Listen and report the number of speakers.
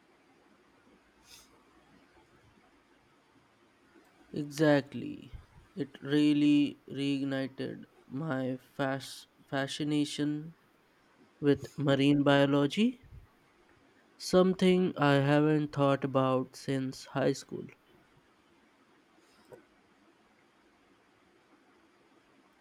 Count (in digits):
1